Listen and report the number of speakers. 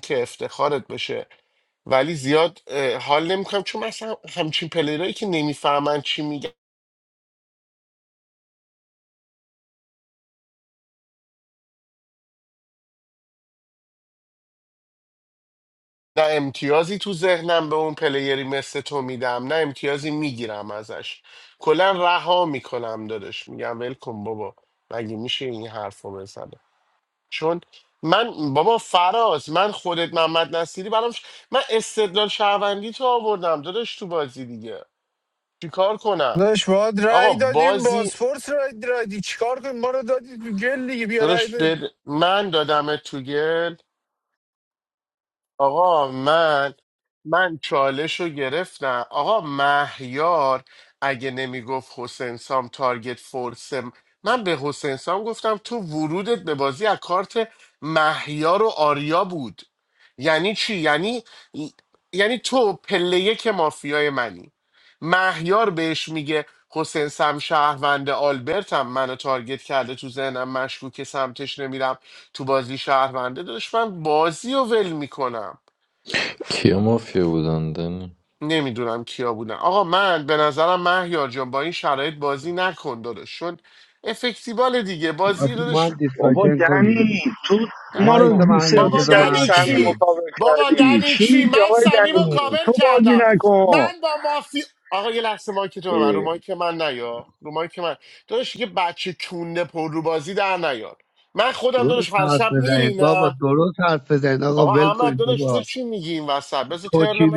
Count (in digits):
5